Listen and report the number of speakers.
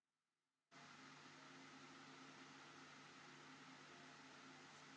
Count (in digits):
0